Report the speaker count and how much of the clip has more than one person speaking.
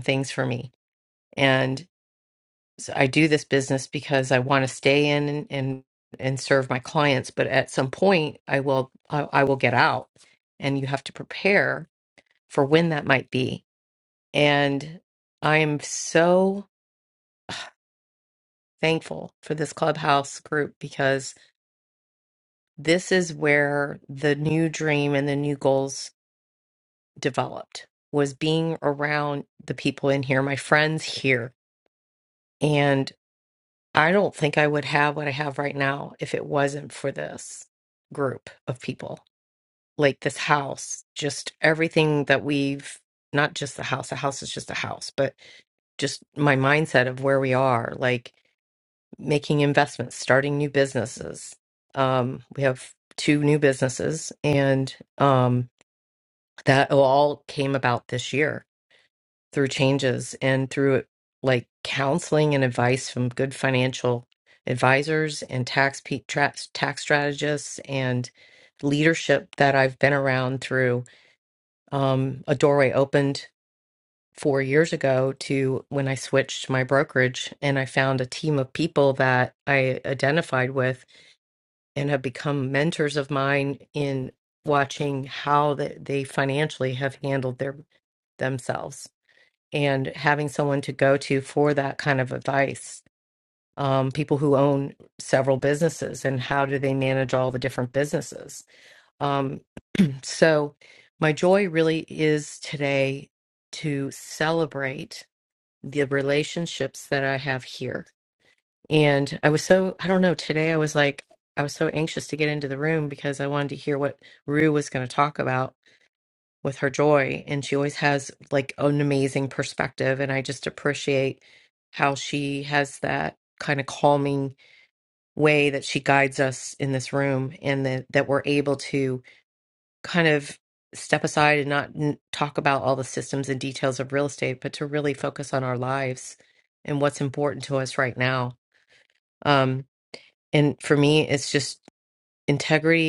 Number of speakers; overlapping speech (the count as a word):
one, no overlap